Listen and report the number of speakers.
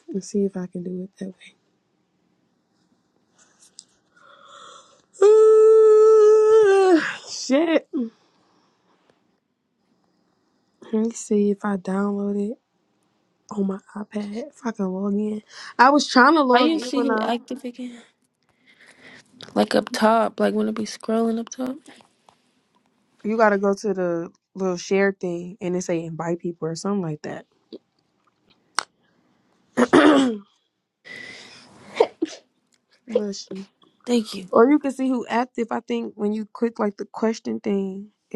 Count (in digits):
2